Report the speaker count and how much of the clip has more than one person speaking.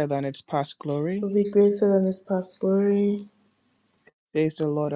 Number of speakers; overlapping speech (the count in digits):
2, about 1%